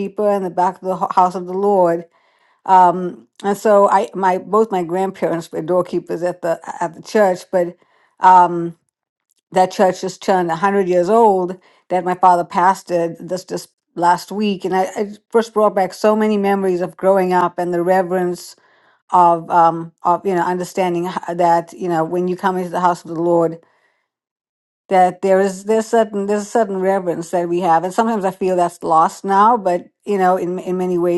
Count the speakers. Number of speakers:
one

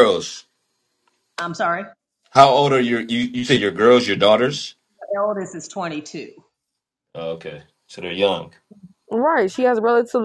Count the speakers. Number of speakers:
three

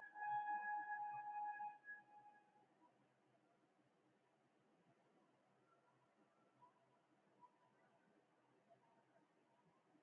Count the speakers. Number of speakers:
zero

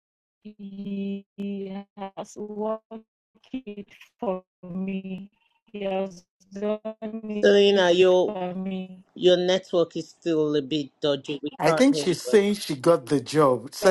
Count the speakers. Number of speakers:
three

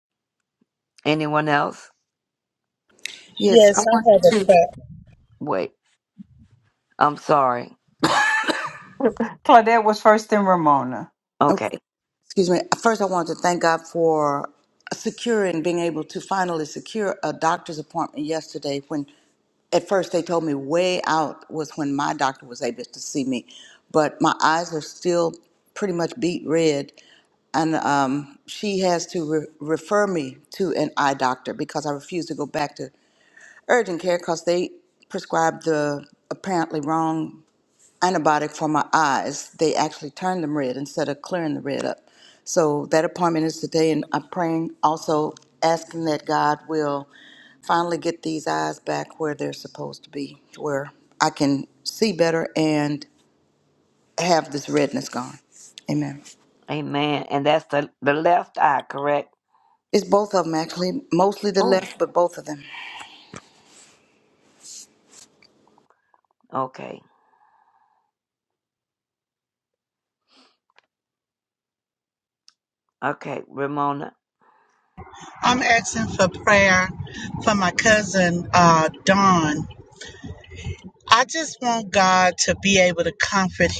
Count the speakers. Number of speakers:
four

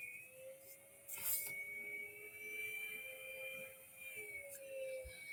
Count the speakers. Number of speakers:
zero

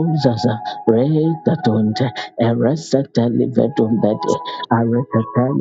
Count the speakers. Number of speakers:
one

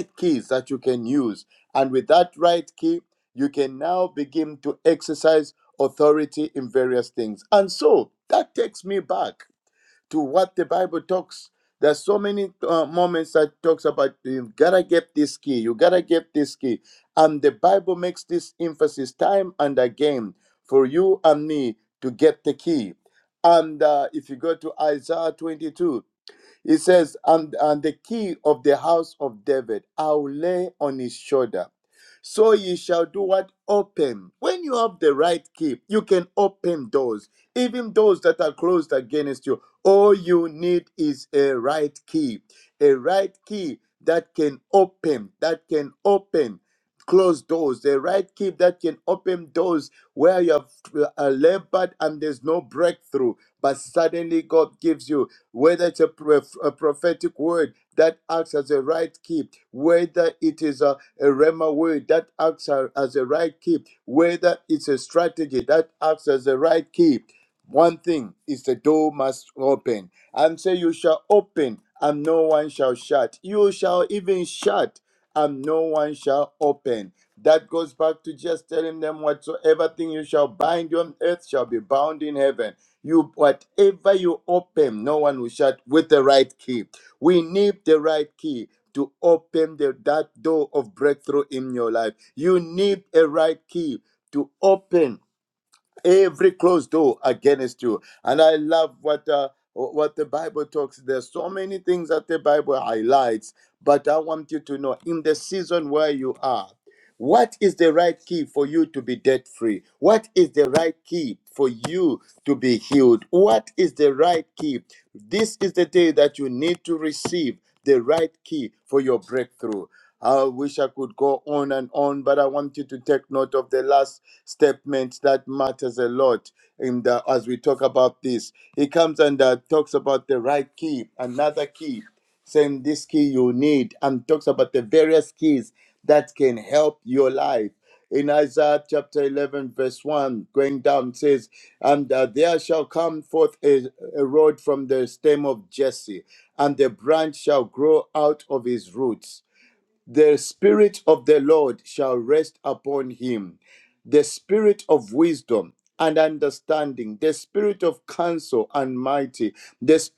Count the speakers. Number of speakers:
one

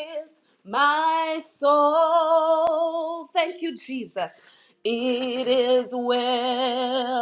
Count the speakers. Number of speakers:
one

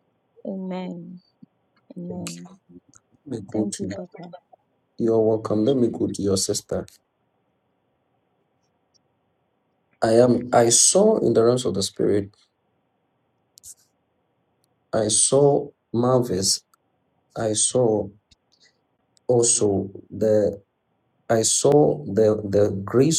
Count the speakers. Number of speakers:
two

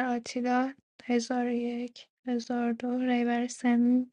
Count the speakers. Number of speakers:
one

